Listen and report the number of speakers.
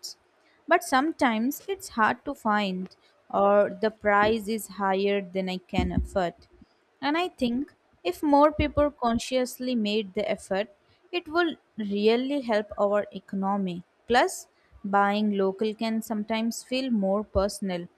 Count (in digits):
1